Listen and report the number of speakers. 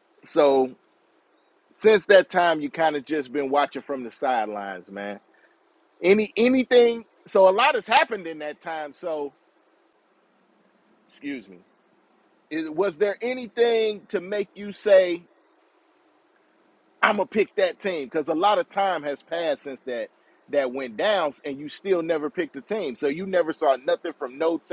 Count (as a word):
one